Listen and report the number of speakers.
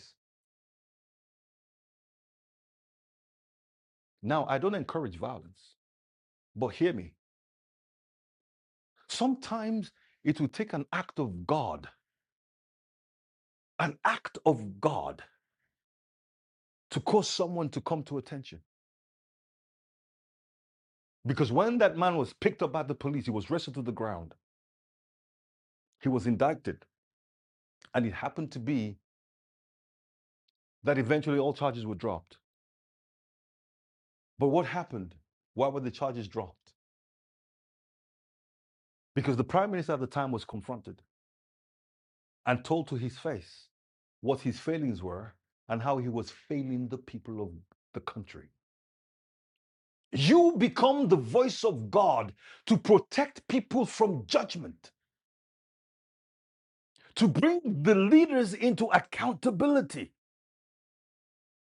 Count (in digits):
1